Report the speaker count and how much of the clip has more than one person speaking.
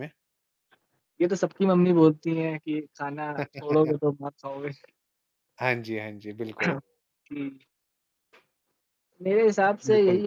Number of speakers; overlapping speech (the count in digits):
2, about 4%